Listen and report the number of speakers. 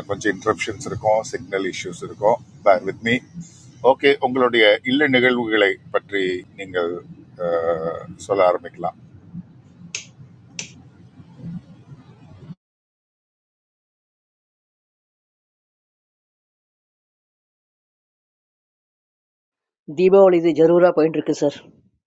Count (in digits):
2